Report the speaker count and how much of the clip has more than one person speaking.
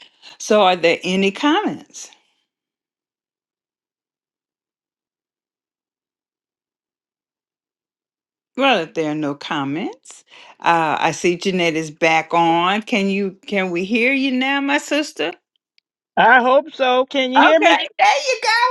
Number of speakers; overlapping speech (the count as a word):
two, about 2%